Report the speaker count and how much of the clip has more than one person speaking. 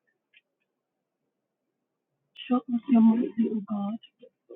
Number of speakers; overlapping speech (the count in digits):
1, no overlap